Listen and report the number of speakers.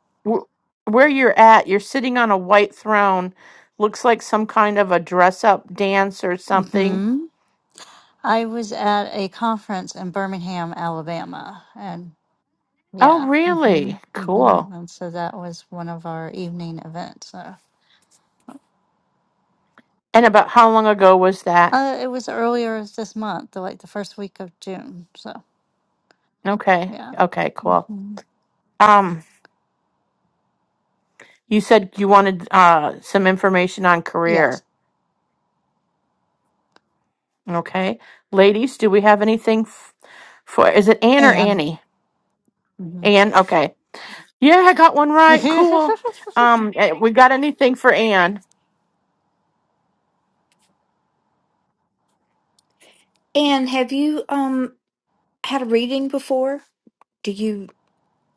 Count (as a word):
three